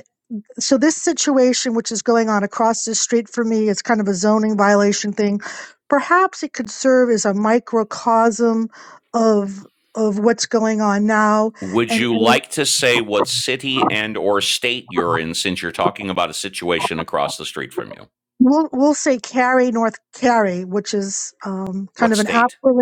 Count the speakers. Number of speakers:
2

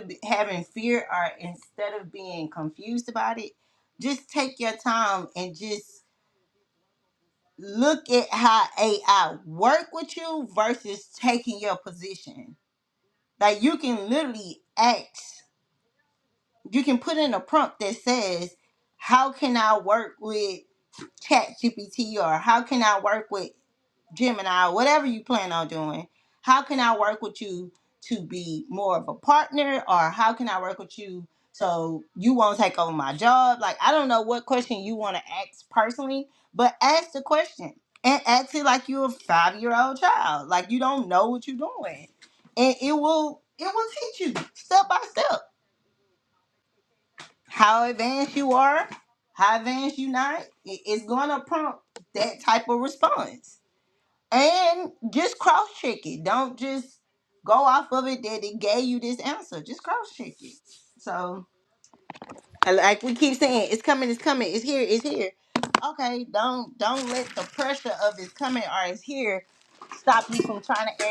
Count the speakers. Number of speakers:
1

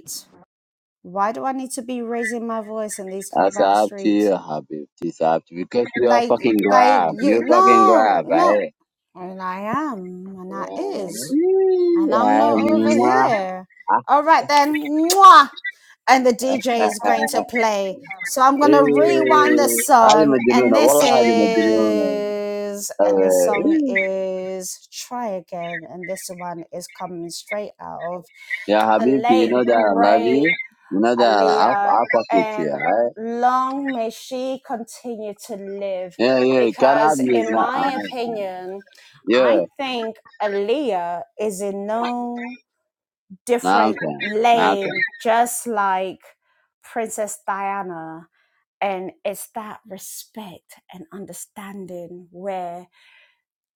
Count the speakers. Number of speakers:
2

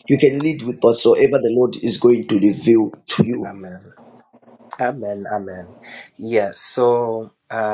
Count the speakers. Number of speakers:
2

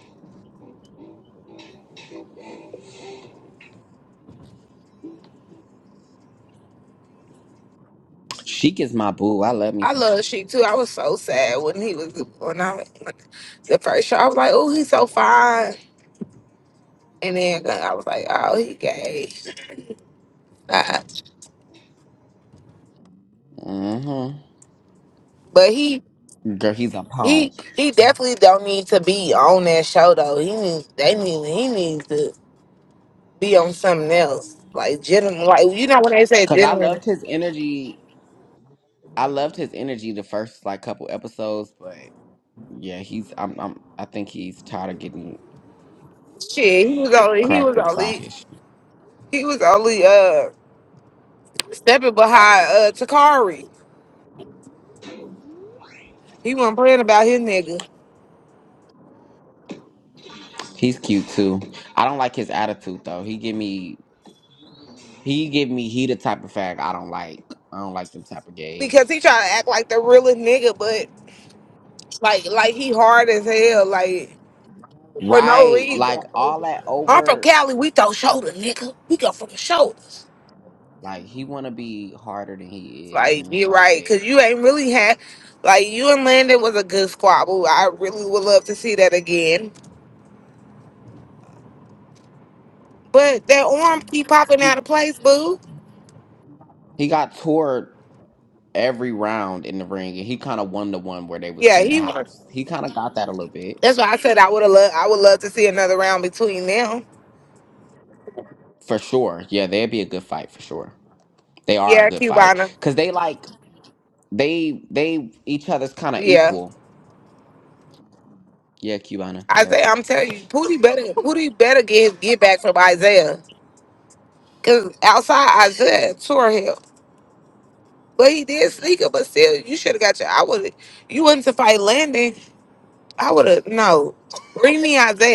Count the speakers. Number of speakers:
2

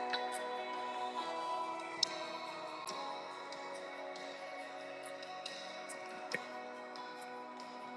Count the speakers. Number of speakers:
0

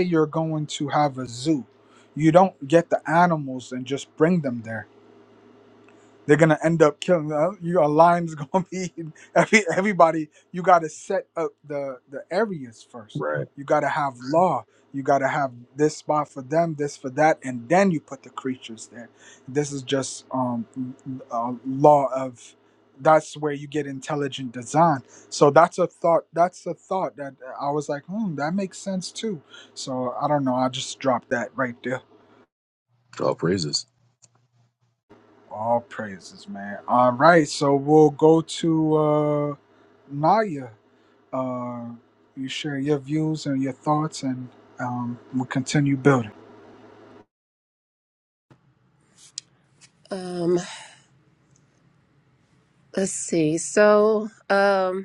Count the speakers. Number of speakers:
3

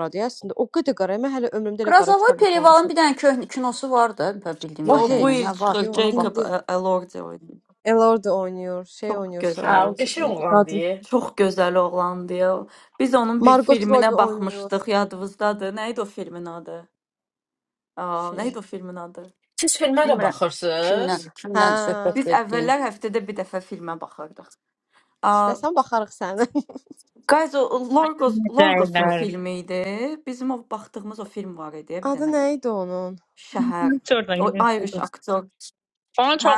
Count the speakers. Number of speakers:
5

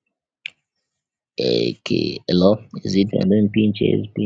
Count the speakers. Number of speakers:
1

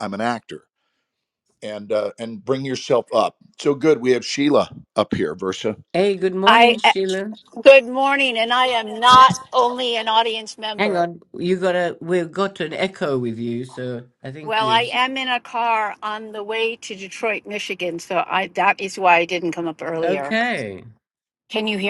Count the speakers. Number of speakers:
3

